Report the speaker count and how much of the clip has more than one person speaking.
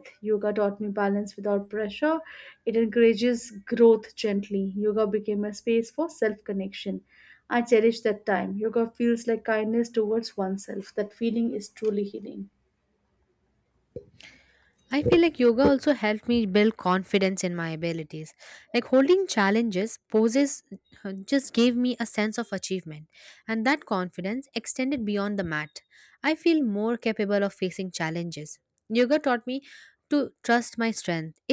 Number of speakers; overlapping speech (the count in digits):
2, no overlap